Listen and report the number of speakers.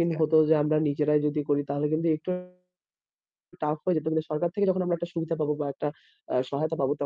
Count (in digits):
1